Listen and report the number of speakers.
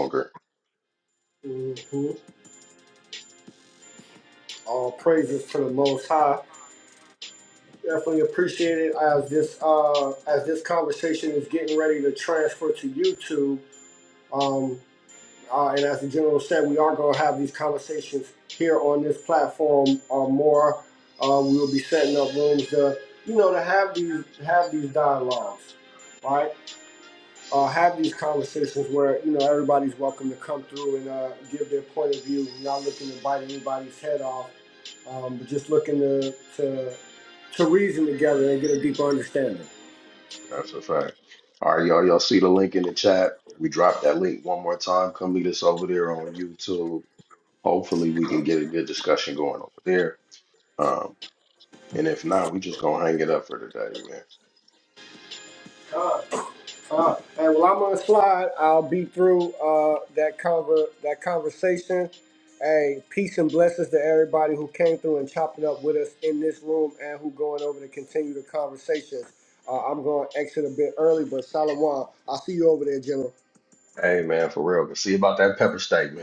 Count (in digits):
2